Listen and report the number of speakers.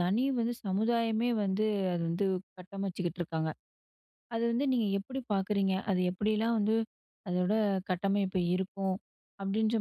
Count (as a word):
one